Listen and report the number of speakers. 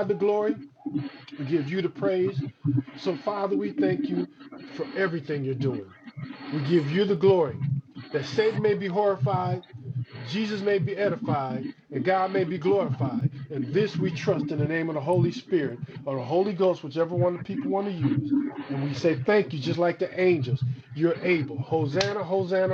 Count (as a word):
one